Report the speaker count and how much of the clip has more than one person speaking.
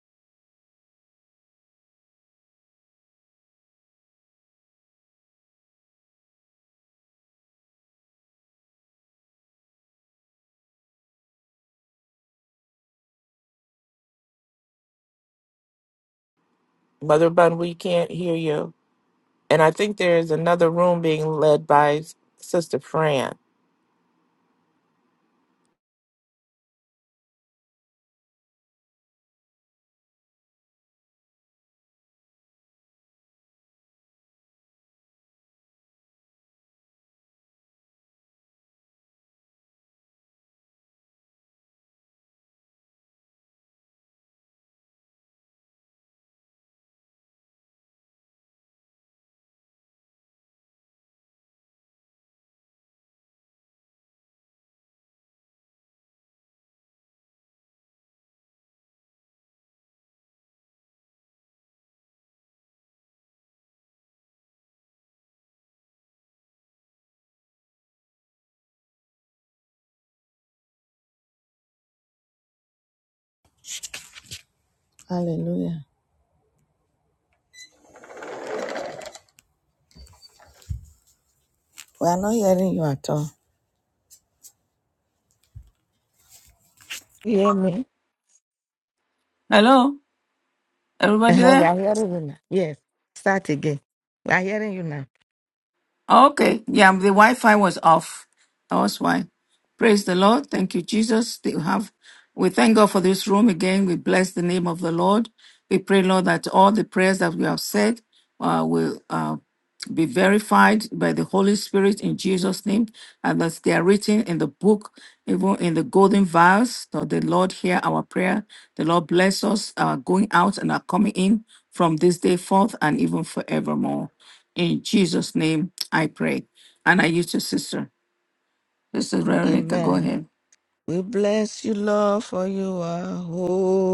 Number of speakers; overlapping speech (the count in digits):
3, about 1%